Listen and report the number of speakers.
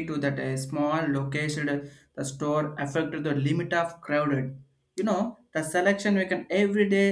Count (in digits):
1